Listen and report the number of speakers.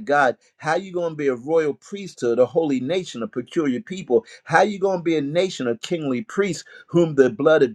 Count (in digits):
1